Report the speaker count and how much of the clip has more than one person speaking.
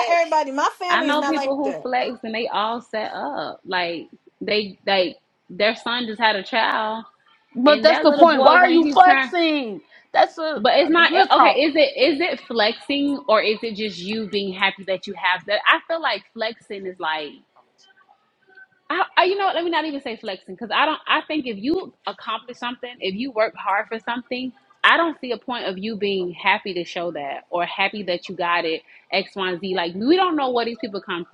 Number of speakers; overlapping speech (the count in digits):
3, about 13%